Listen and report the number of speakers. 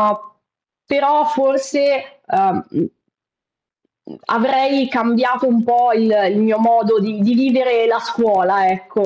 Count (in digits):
1